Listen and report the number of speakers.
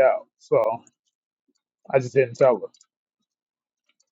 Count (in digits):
1